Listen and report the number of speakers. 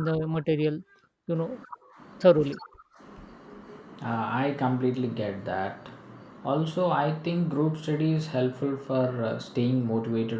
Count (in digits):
2